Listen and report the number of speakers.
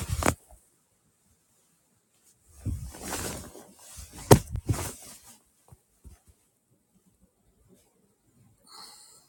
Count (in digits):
0